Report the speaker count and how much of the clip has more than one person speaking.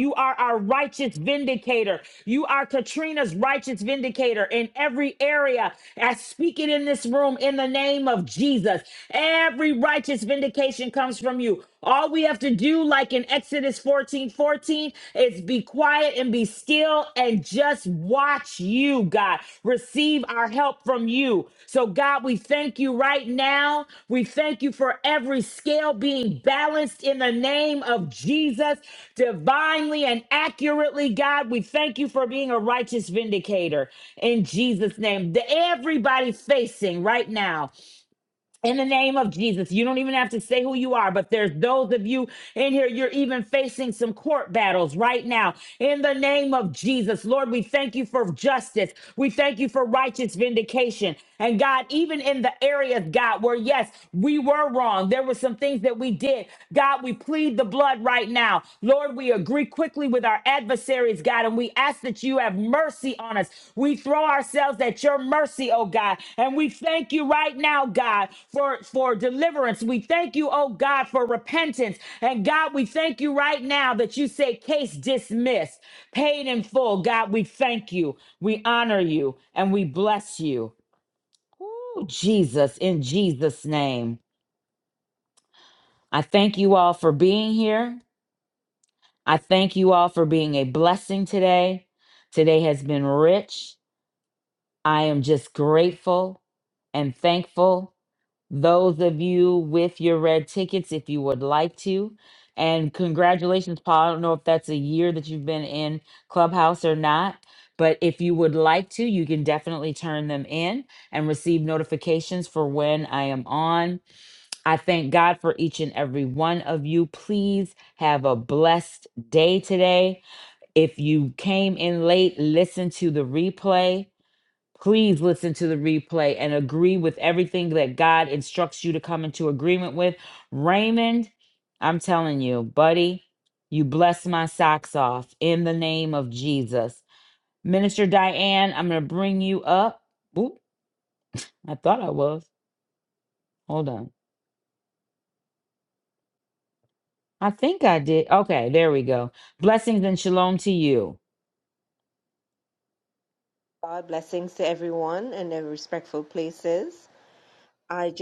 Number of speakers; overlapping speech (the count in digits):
2, no overlap